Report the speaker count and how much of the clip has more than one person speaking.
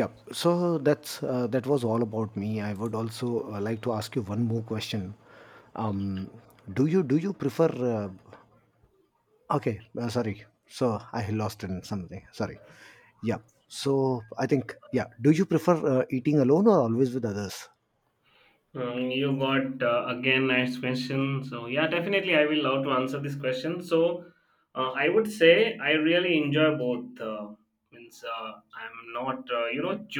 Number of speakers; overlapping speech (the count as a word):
two, no overlap